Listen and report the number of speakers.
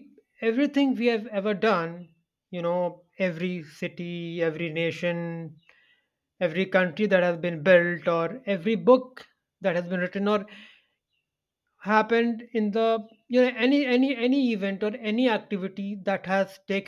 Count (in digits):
1